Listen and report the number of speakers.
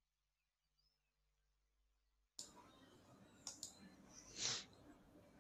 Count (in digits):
0